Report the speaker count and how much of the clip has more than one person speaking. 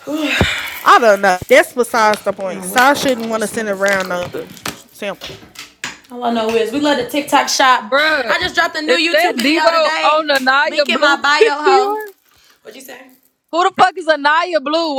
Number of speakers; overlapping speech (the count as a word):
three, about 33%